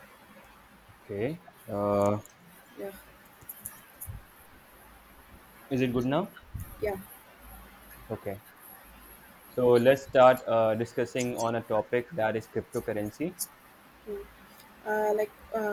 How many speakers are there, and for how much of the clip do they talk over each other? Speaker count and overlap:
2, no overlap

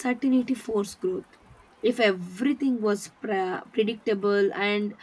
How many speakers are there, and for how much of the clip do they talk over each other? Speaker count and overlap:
1, no overlap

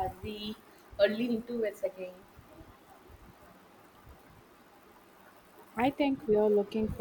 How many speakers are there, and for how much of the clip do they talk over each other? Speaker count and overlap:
2, no overlap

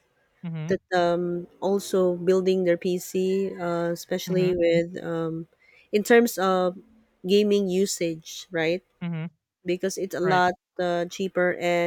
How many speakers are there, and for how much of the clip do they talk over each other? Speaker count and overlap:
2, about 4%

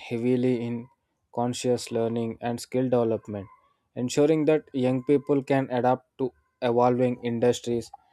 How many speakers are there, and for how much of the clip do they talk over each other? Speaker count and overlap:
1, no overlap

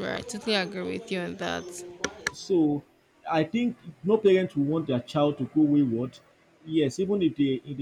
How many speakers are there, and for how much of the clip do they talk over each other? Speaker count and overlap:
2, no overlap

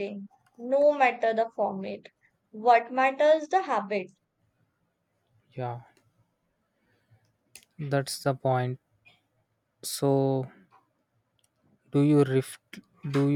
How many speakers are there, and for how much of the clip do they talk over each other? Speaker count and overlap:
2, no overlap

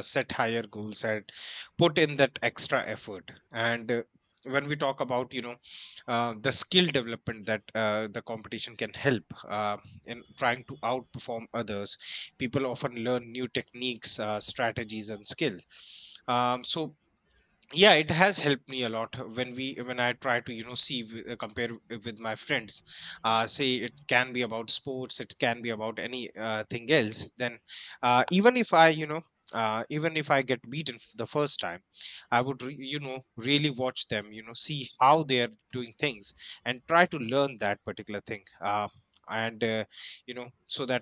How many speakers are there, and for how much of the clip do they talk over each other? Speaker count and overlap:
1, no overlap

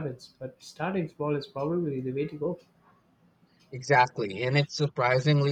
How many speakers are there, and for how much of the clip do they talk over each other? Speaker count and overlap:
2, no overlap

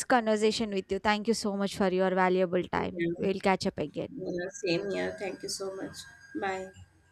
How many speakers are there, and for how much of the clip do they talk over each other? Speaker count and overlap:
2, no overlap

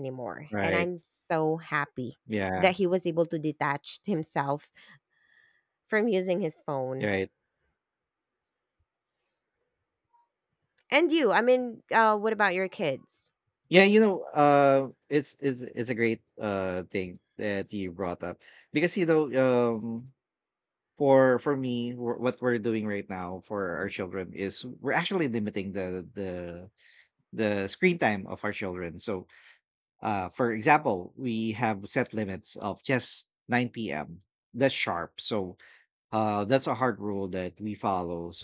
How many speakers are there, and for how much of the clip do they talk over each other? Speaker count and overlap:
2, about 1%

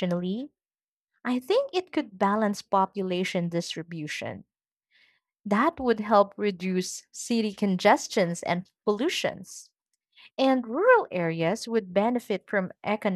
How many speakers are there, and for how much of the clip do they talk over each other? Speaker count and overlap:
1, no overlap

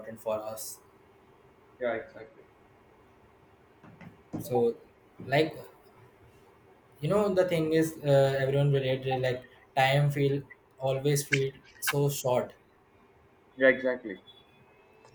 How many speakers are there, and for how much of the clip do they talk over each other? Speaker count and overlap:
2, no overlap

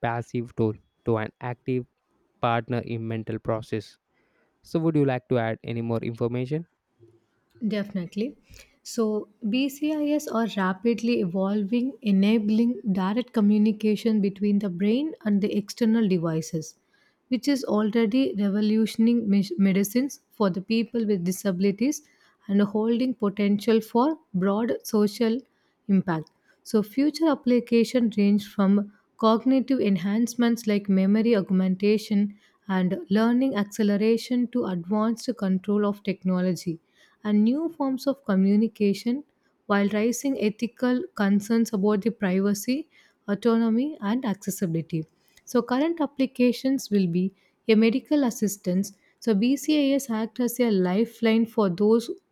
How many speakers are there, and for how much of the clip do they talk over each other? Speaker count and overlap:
2, no overlap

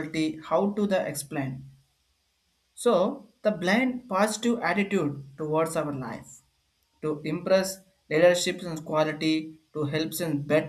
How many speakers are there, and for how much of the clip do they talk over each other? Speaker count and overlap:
1, no overlap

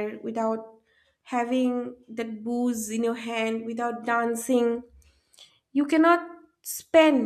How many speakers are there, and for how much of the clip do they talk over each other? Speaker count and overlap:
1, no overlap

